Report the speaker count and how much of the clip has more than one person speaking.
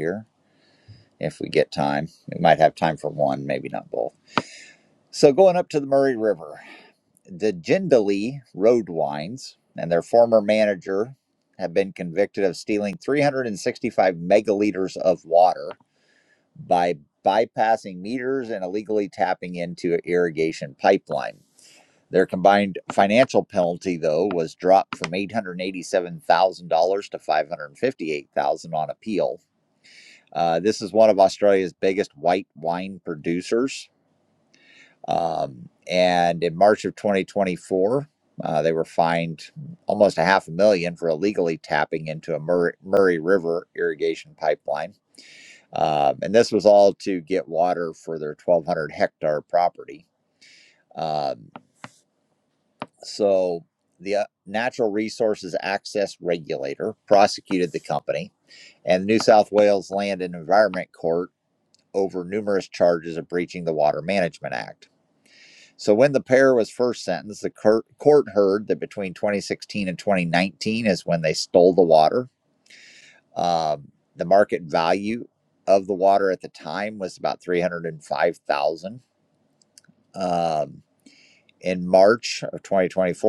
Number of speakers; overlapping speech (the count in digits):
1, no overlap